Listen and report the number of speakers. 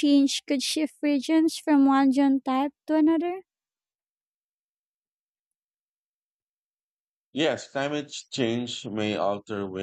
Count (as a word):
two